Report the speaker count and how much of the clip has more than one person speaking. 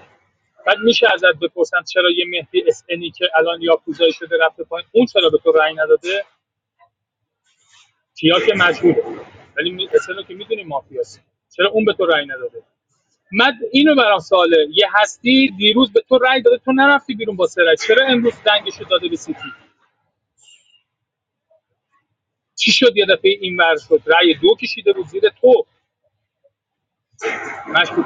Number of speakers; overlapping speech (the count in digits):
1, no overlap